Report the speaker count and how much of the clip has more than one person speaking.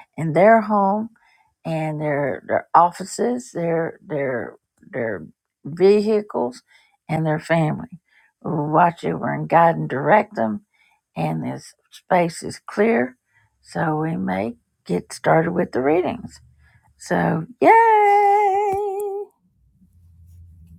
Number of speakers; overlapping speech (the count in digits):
1, no overlap